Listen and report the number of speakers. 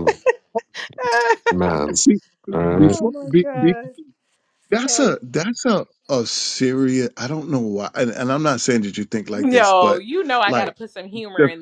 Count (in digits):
3